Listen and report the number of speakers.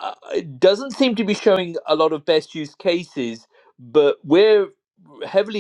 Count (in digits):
1